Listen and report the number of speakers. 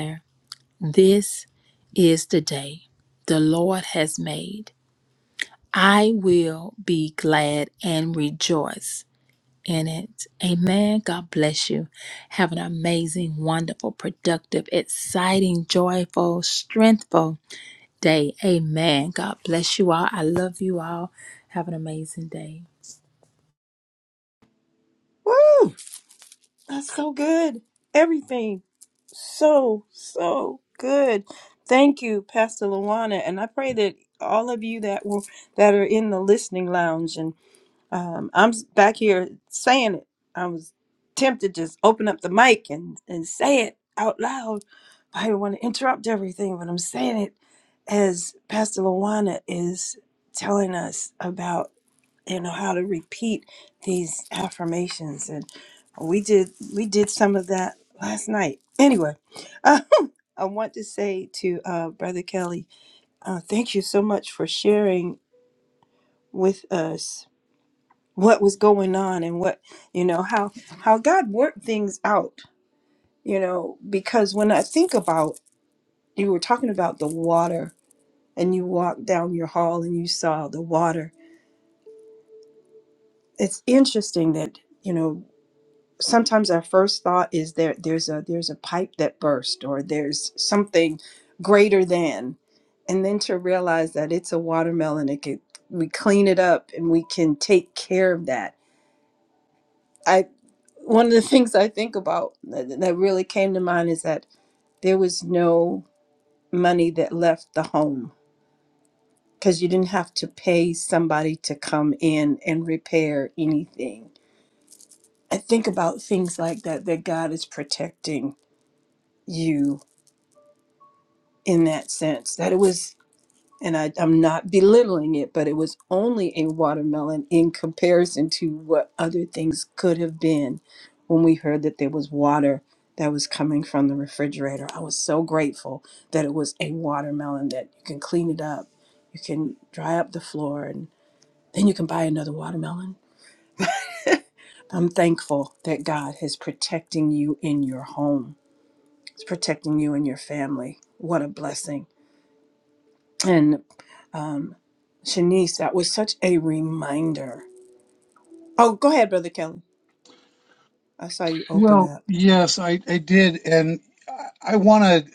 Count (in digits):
3